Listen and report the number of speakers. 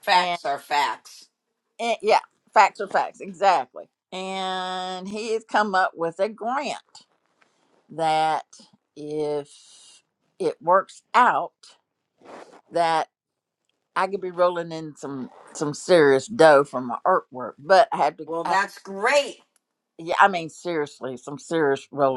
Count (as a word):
two